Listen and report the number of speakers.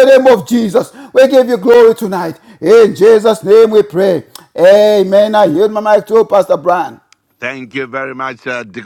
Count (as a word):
two